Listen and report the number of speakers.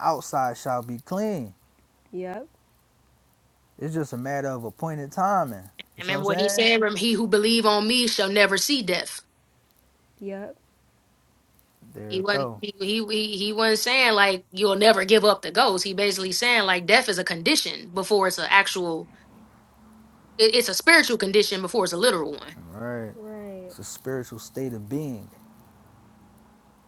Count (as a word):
three